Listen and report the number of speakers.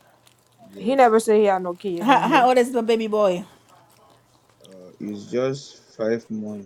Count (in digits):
3